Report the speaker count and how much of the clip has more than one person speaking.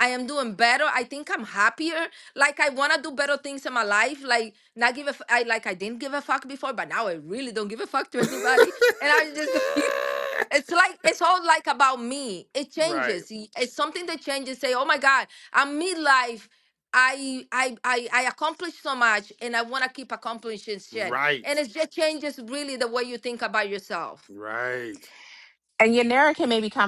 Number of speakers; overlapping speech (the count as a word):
three, about 4%